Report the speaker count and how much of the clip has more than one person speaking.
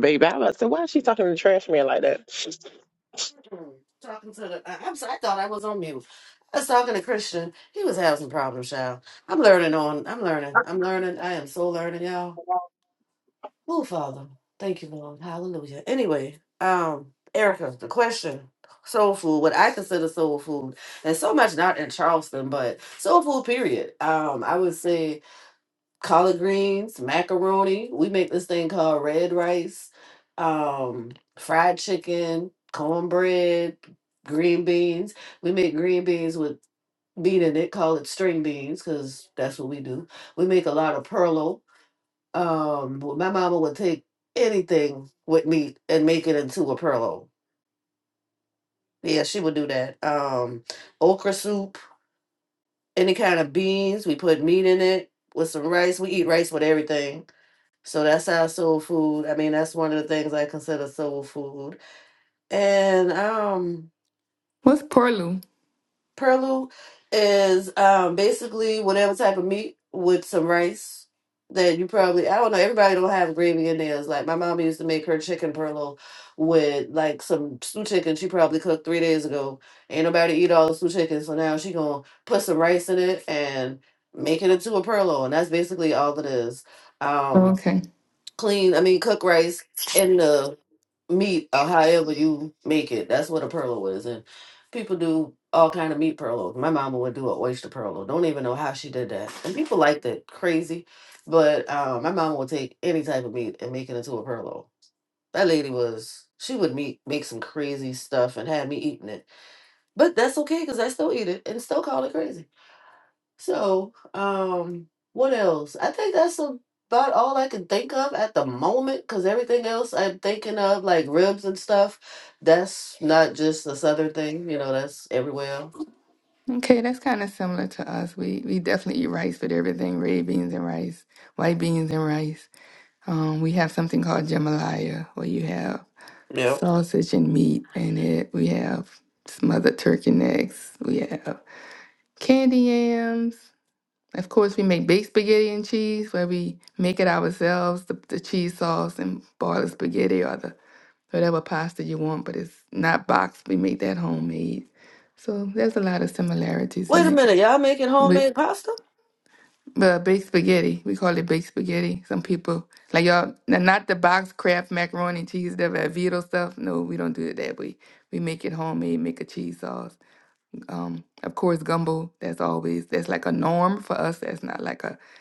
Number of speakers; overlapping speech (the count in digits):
3, about 1%